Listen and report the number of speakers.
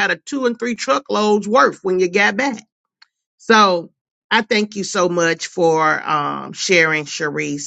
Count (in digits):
1